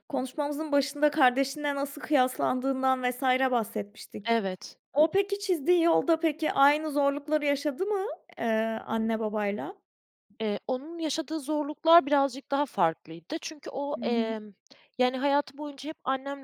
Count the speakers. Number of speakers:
2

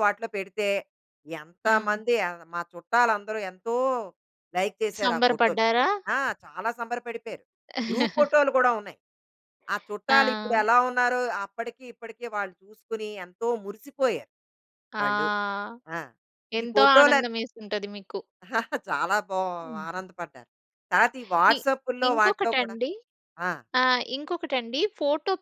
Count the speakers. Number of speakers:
2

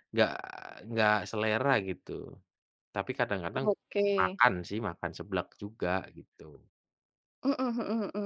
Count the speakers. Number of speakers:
2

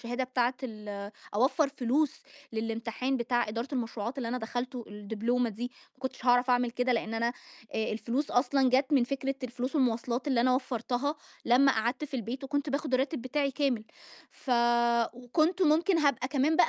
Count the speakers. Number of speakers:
1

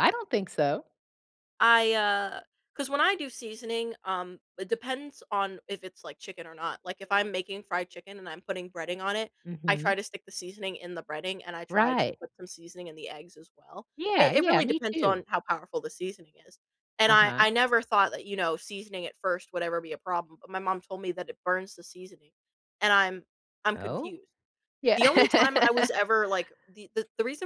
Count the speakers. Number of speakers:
2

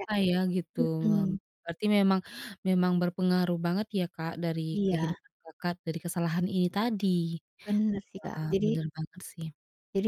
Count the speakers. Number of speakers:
2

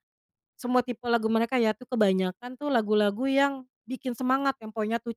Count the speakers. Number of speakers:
1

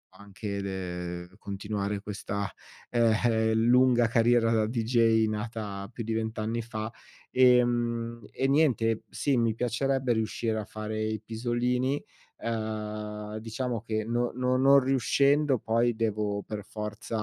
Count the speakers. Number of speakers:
1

